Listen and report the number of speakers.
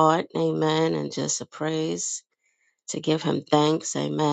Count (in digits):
1